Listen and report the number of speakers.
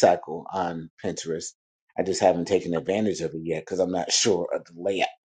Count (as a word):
one